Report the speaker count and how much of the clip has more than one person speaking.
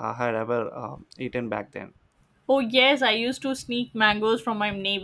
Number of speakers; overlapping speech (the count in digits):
2, no overlap